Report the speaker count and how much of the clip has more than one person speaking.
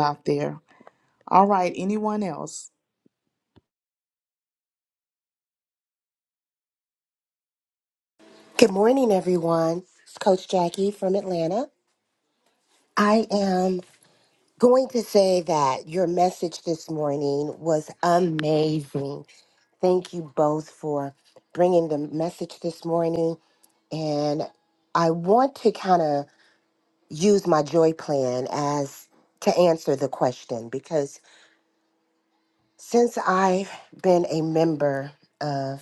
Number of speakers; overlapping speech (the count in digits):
2, no overlap